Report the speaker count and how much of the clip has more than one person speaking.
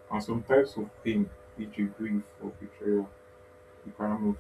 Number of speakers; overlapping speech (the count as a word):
one, no overlap